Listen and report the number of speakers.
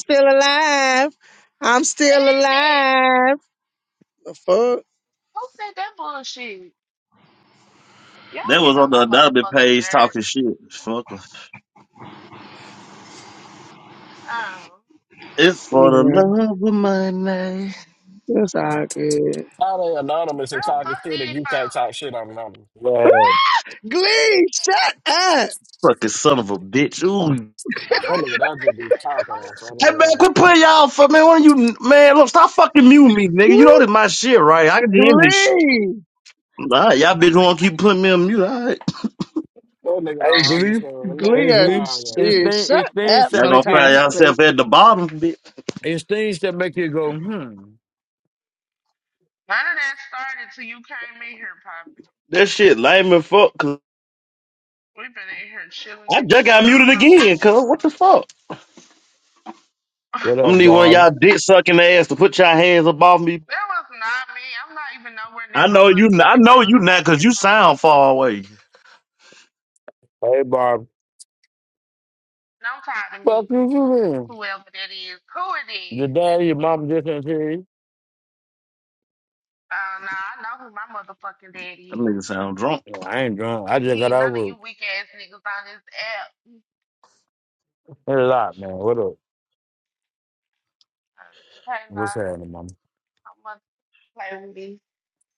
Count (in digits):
5